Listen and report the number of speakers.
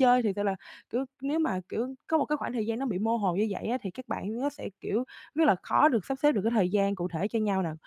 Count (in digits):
1